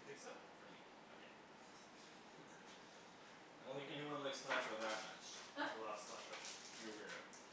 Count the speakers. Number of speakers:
two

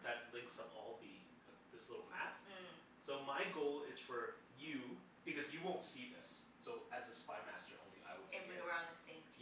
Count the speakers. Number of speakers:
two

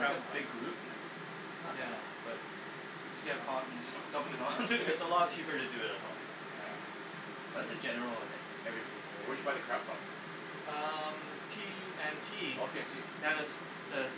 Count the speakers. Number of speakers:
three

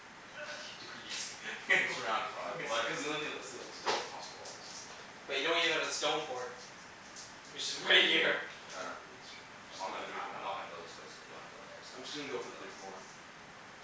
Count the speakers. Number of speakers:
three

